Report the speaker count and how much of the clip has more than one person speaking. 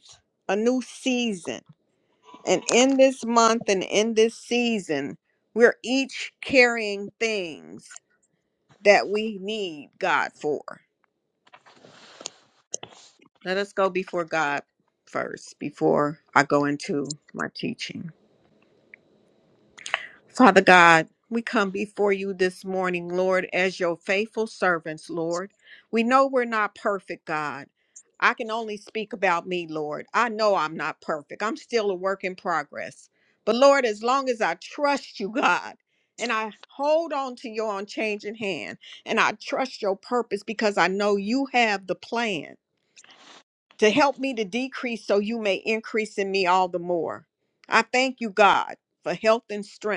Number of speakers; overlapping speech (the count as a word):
one, no overlap